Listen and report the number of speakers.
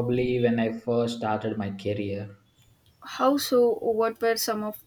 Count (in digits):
2